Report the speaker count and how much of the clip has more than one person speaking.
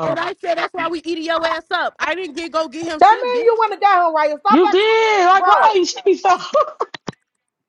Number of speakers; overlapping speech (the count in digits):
3, about 17%